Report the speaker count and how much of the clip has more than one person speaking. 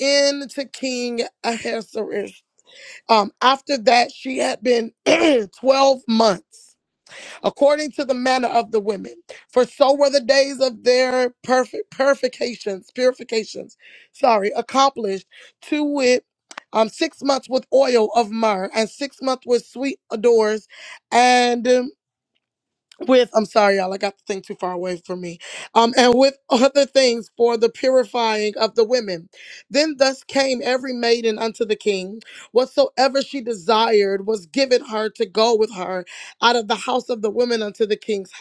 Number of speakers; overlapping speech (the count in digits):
1, no overlap